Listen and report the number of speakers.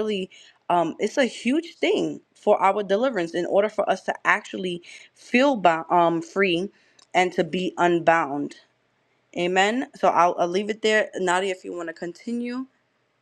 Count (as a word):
one